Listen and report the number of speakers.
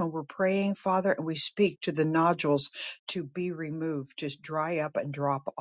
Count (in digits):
1